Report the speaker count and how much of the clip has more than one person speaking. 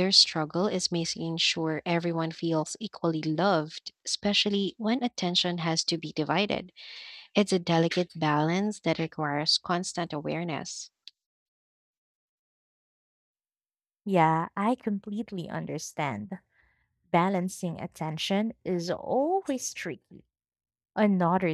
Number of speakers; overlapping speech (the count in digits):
2, no overlap